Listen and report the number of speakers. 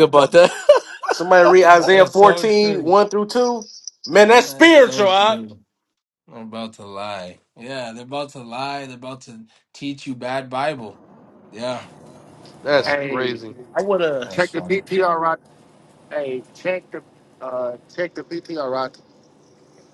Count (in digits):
4